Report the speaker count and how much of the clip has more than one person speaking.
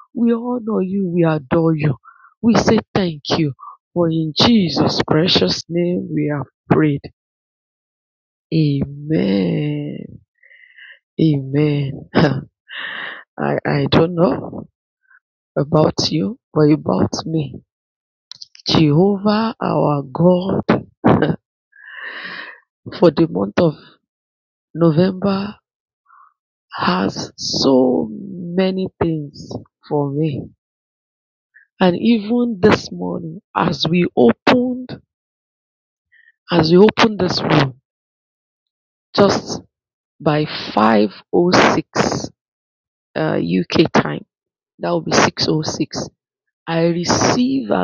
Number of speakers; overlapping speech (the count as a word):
one, no overlap